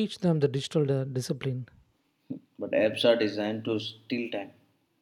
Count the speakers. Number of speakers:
two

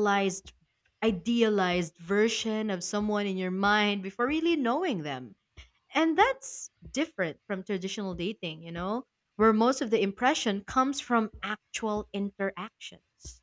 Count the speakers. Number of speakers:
one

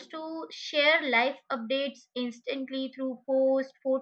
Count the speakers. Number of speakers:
one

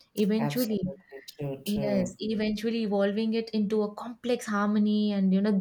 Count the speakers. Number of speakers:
two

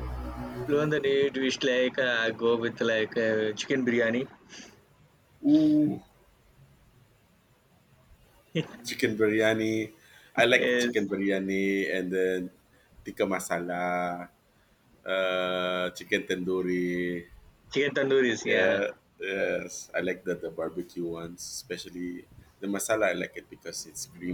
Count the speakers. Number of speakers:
two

